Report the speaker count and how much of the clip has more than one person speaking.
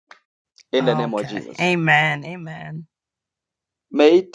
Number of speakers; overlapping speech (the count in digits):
2, about 17%